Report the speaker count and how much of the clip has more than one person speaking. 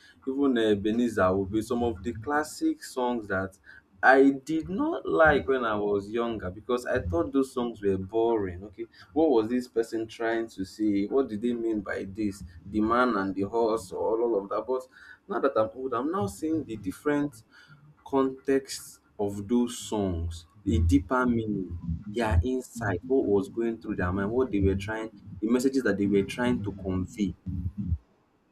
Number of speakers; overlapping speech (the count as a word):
one, no overlap